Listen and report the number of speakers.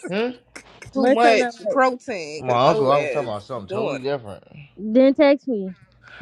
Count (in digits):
3